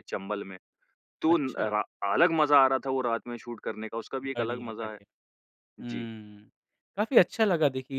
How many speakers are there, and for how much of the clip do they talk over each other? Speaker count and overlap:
two, about 16%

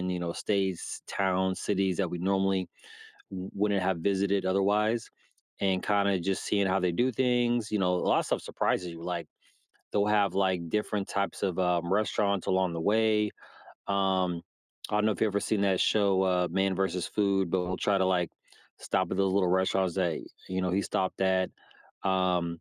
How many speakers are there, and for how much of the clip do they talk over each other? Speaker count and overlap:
one, no overlap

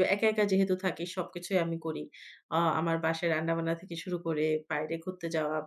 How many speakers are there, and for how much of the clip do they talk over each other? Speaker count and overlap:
one, no overlap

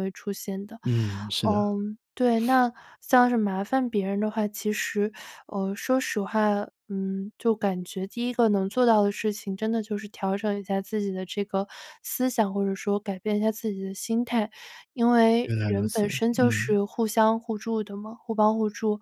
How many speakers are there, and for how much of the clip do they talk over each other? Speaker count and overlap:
two, about 8%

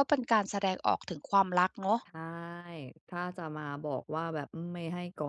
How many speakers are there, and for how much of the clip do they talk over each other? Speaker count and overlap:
two, no overlap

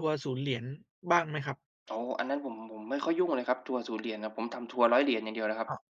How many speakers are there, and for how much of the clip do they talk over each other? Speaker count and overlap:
two, about 2%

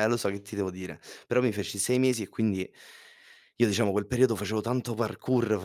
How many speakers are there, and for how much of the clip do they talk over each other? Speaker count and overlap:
one, no overlap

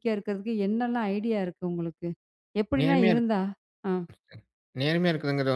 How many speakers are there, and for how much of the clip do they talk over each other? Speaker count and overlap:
two, about 8%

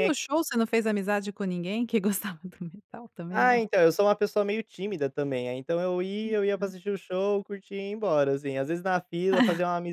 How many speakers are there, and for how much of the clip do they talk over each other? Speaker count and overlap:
two, about 4%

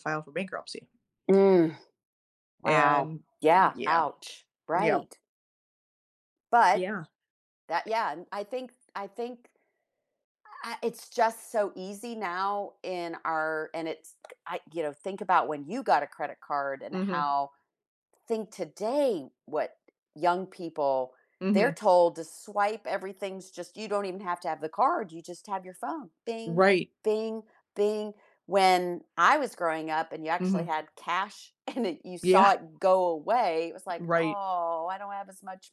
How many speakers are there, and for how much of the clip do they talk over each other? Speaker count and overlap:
two, about 8%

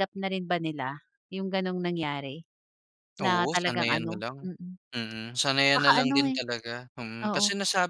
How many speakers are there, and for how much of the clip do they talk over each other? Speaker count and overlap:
two, about 27%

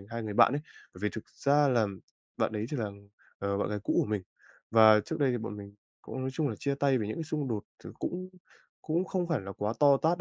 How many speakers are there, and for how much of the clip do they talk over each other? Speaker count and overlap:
one, no overlap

